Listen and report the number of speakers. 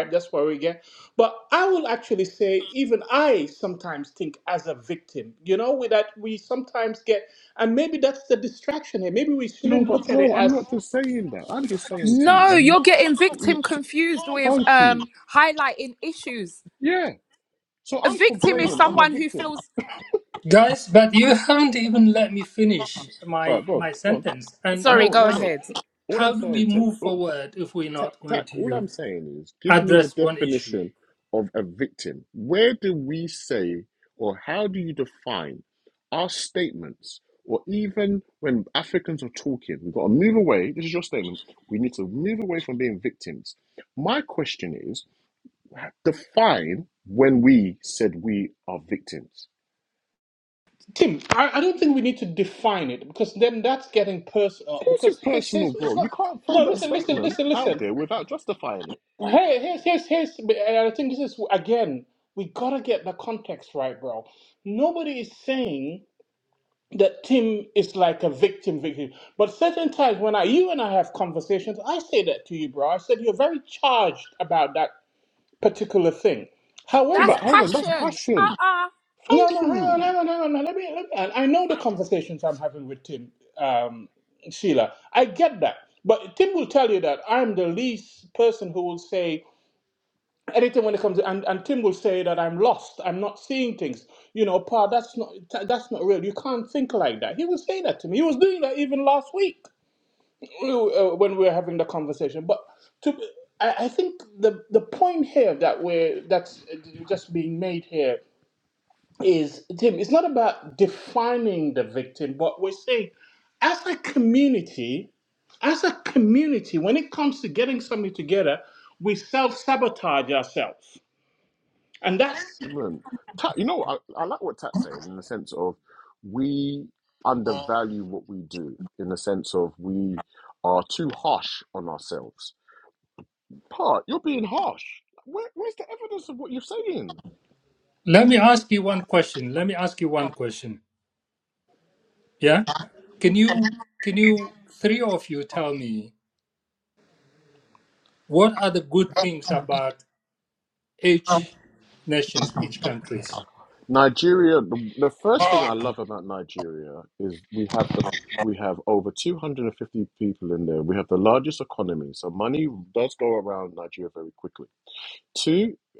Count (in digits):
4